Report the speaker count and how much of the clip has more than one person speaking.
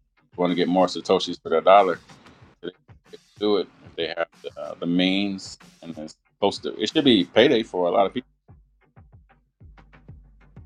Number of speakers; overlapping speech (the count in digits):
1, no overlap